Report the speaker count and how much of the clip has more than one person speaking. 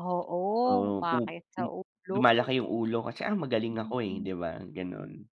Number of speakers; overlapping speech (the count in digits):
2, about 29%